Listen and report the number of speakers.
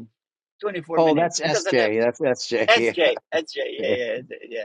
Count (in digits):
2